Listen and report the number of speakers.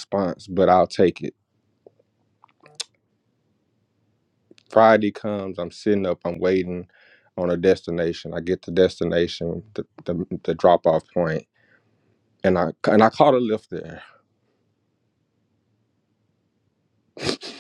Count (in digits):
1